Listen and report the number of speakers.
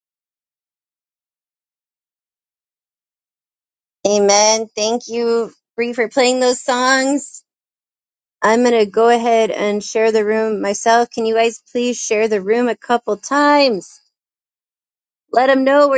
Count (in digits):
1